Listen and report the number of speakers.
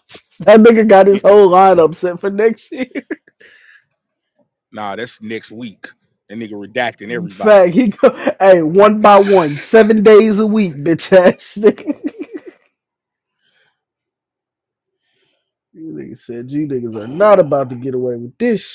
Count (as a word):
two